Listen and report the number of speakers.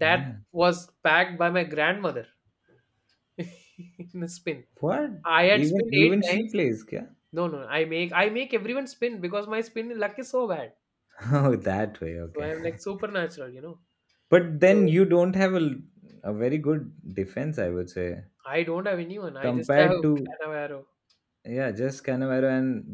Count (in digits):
2